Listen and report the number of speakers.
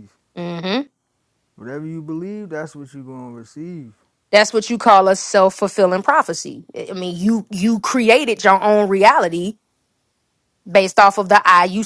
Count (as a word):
two